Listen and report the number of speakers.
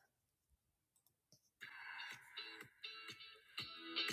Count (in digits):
0